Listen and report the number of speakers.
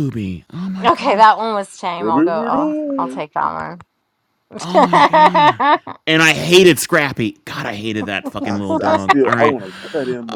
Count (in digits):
3